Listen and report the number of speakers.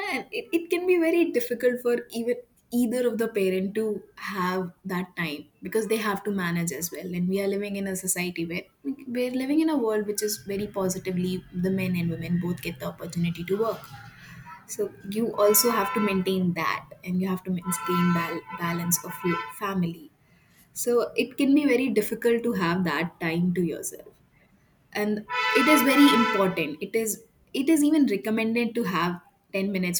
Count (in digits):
1